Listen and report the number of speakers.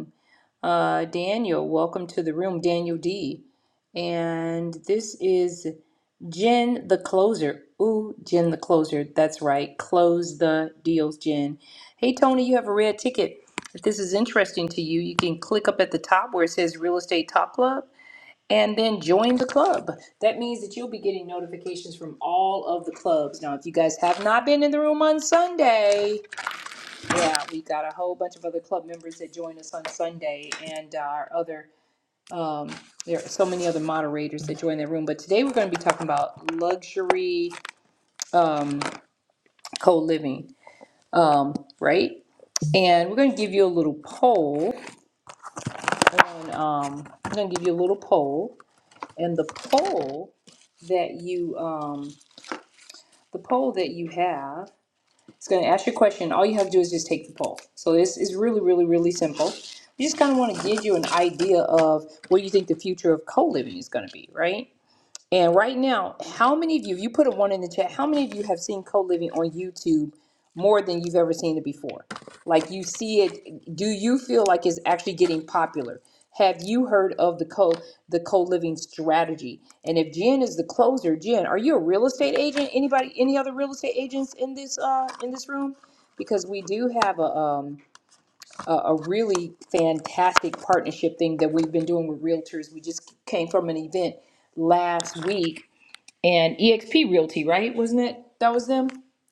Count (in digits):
1